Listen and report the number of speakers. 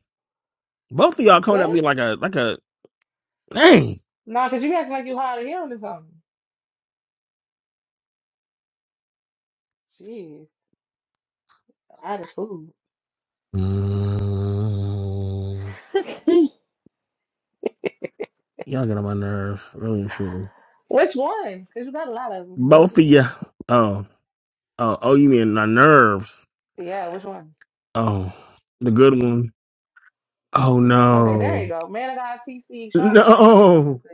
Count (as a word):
two